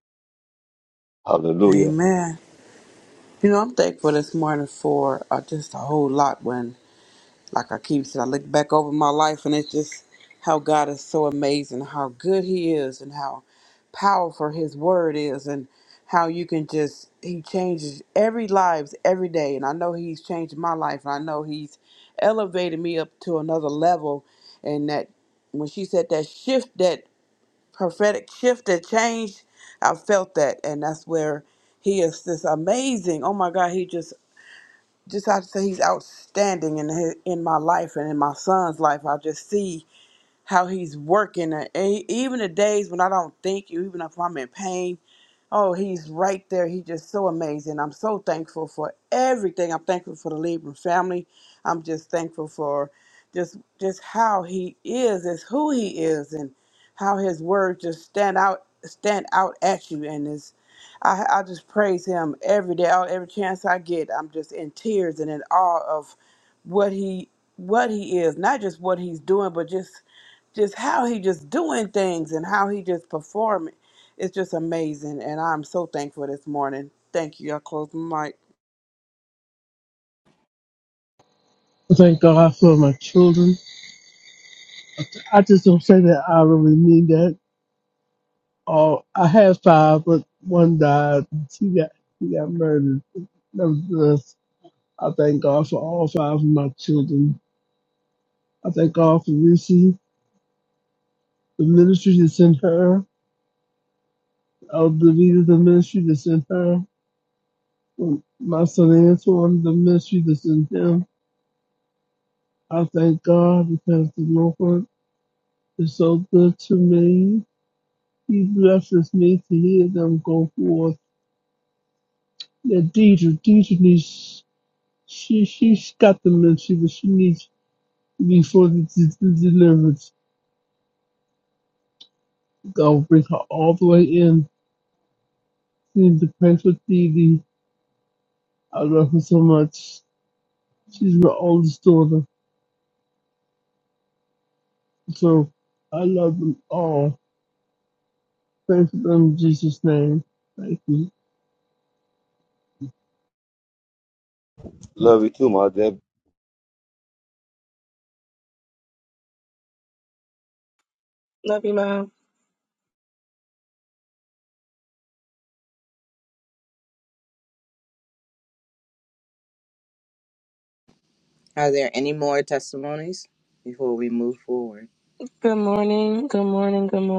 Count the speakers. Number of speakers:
5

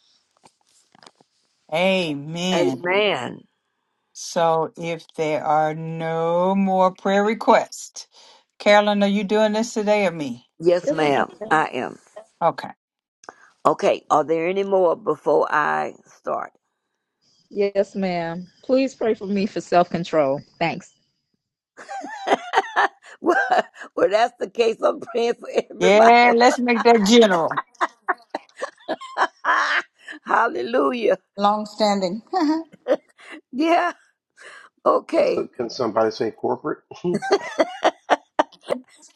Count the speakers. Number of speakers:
5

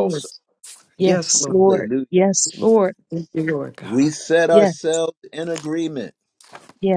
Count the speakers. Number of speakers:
3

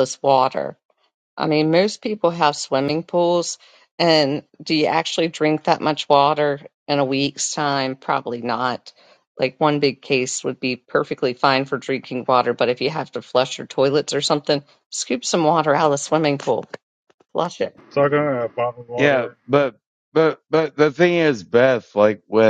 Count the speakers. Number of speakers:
3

